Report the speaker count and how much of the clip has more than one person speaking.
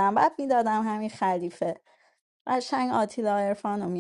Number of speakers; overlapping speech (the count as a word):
one, no overlap